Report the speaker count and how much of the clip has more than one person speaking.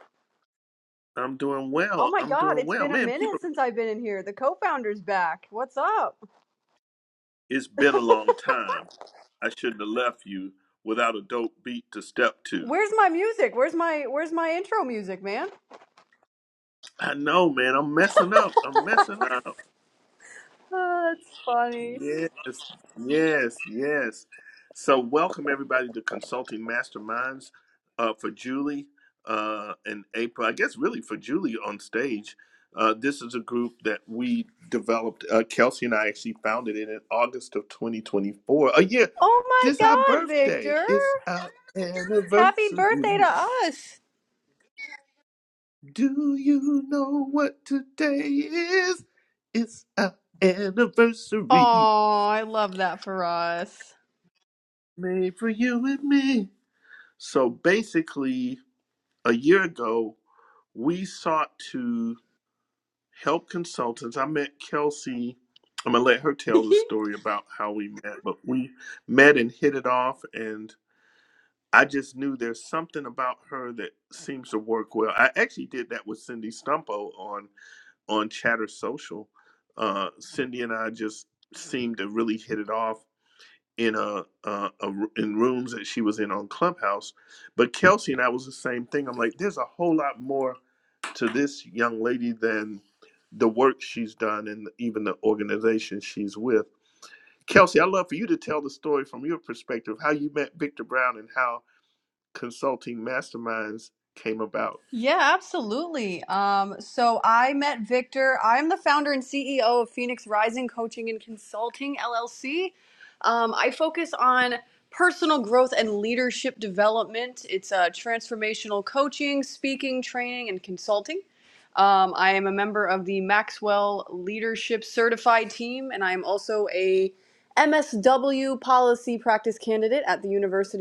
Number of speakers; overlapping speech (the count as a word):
two, about 2%